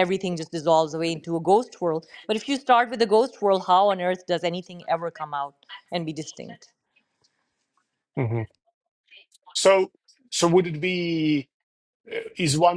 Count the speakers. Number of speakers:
2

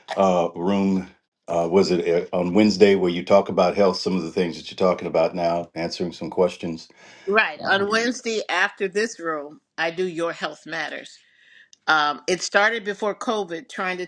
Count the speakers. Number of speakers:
2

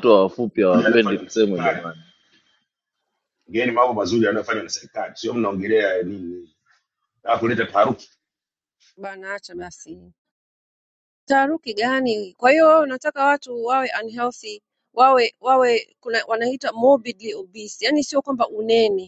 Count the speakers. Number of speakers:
3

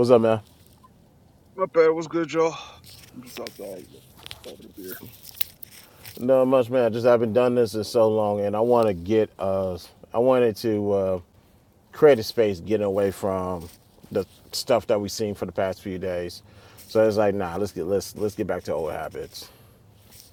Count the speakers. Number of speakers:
2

